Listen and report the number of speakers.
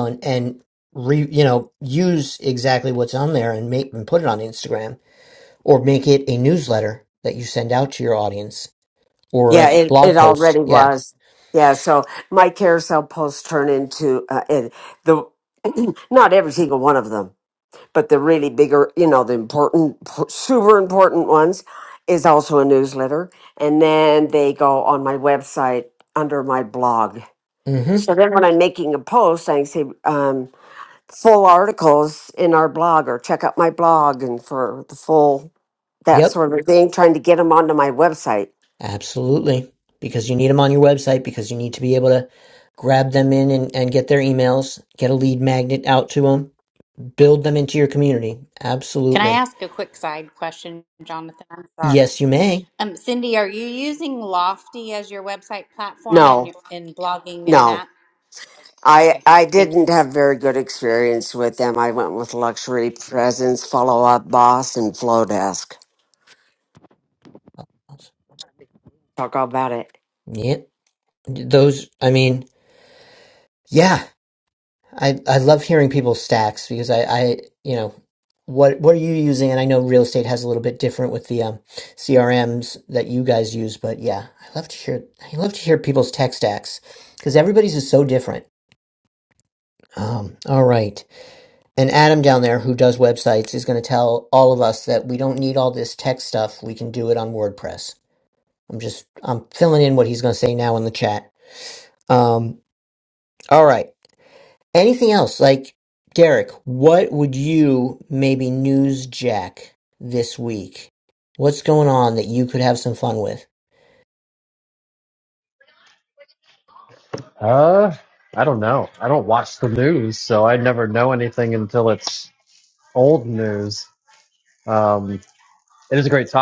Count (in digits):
4